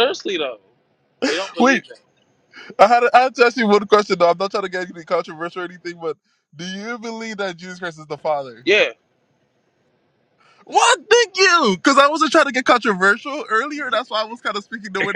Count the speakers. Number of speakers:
two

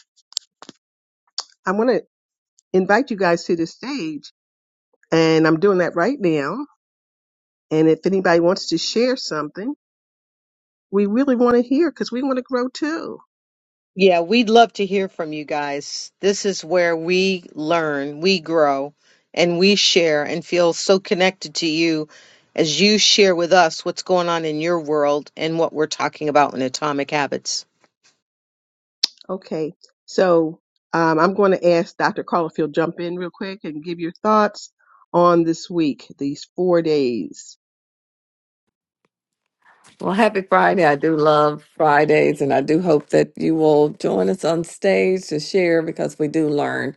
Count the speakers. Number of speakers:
three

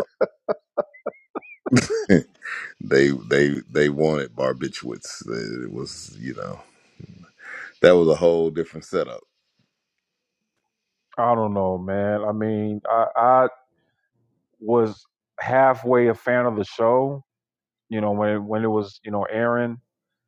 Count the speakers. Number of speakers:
two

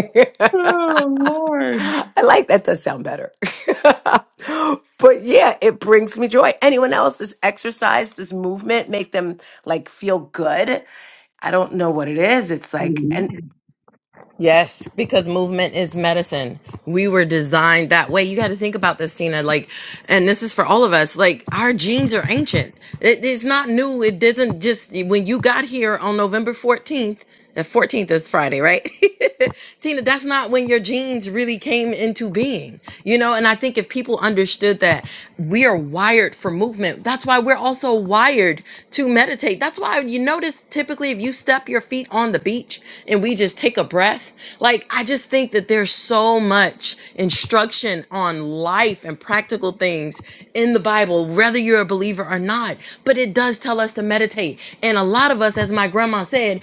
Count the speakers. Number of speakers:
three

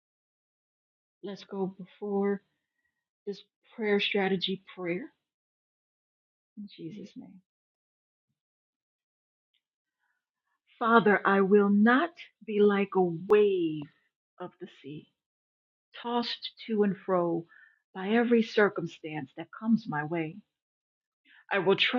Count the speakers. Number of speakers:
one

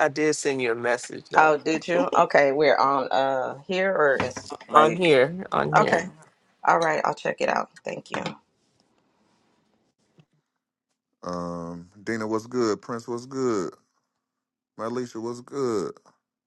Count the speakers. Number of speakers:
three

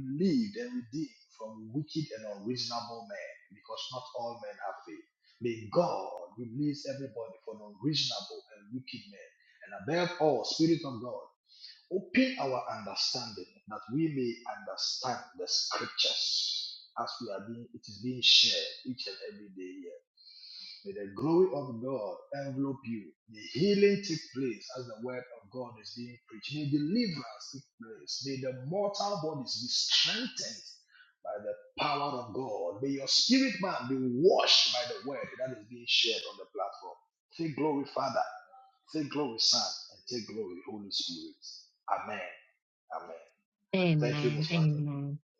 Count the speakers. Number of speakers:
two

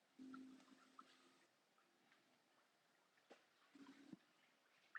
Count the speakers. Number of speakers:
zero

